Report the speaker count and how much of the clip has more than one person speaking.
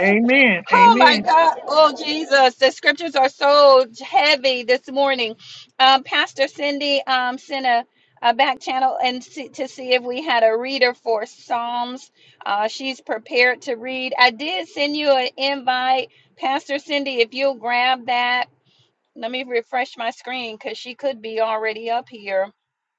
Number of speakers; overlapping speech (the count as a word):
two, about 3%